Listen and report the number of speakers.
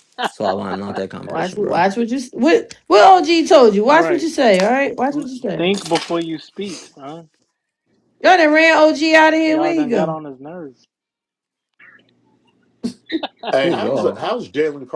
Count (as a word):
four